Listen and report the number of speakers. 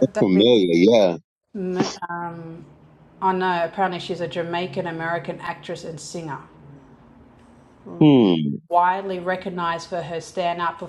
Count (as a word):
two